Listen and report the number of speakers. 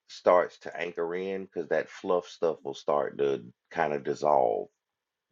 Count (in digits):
1